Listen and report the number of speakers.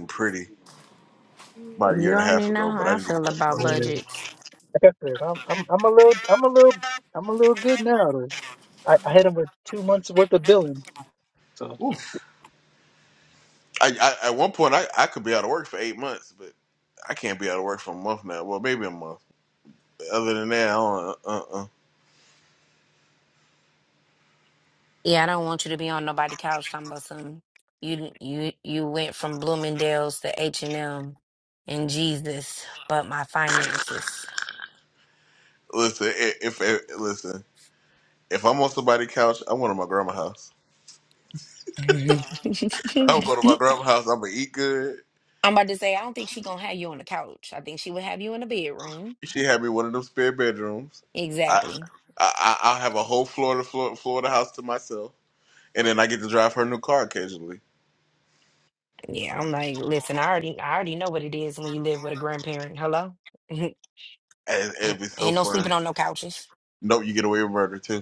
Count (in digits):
3